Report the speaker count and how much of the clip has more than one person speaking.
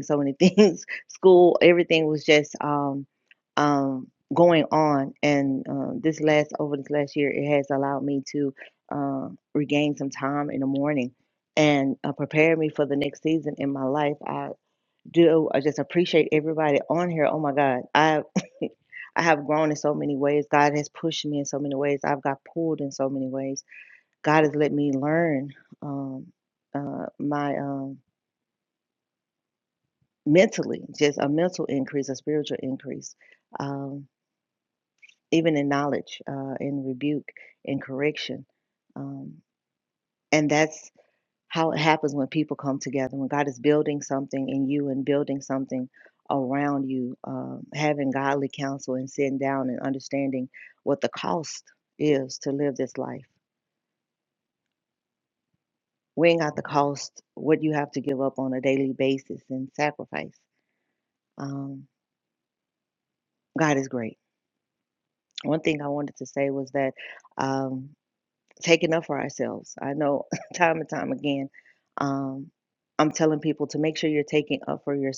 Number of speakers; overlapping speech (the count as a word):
one, no overlap